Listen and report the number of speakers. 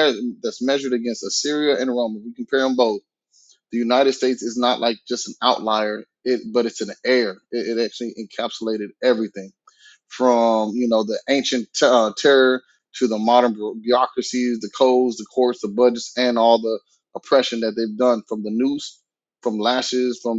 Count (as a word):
one